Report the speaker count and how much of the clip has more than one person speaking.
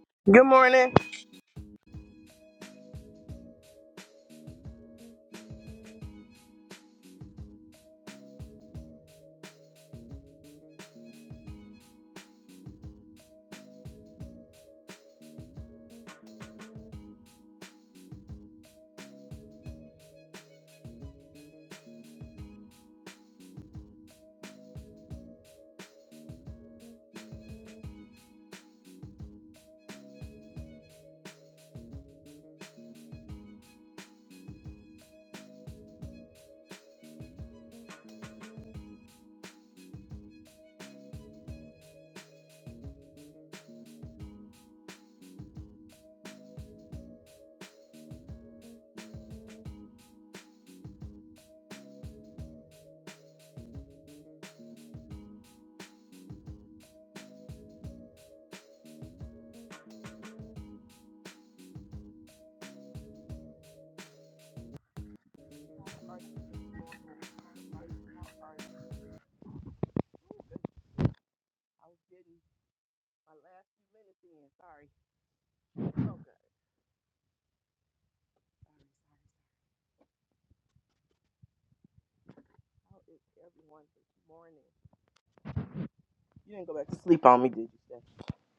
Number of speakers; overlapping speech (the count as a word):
one, no overlap